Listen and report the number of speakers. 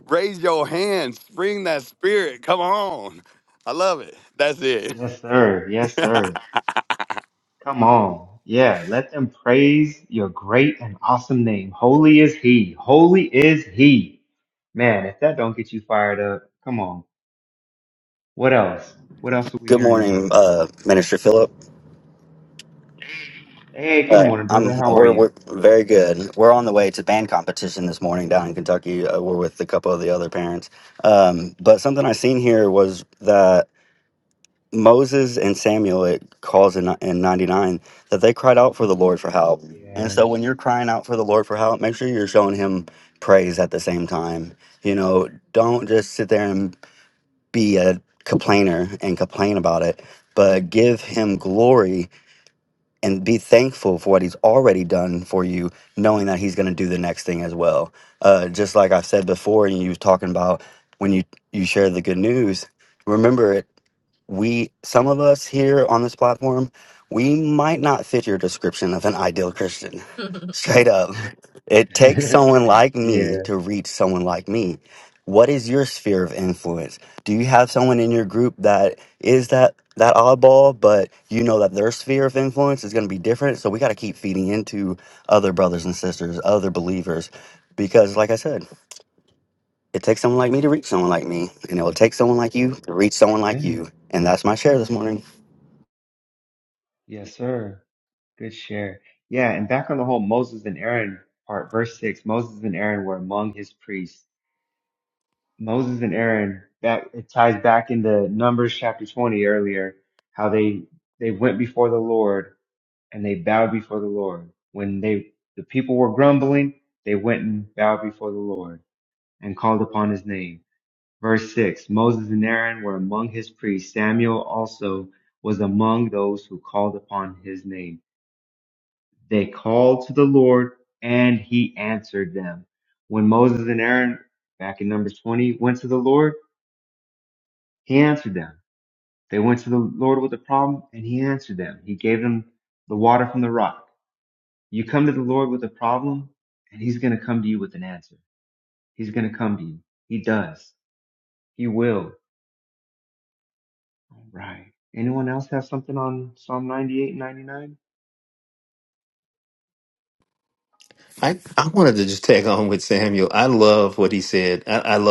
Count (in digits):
4